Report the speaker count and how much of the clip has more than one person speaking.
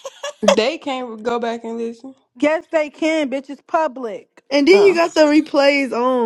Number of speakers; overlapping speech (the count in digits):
3, about 4%